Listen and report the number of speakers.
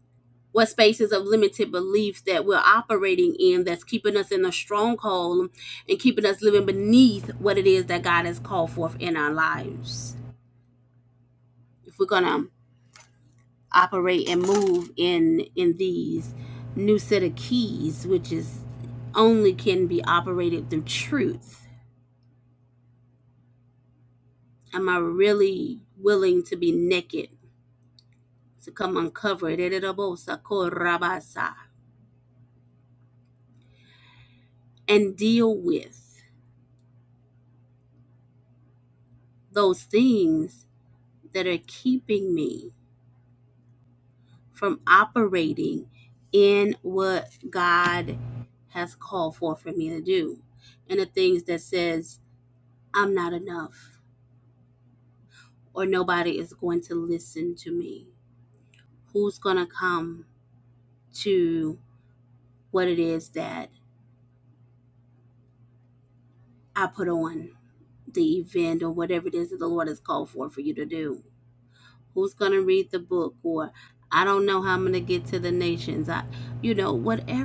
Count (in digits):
1